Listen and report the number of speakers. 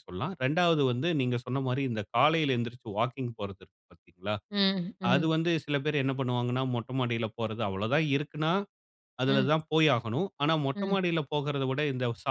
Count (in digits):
2